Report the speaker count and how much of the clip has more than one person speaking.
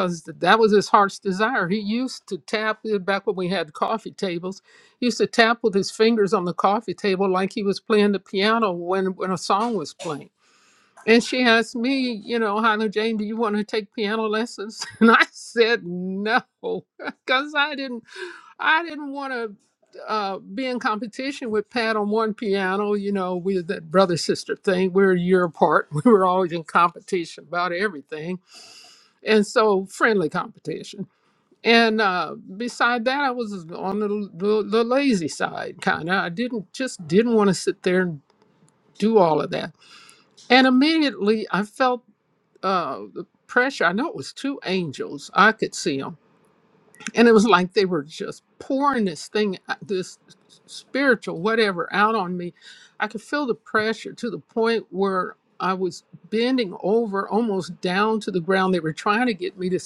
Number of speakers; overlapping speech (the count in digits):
1, no overlap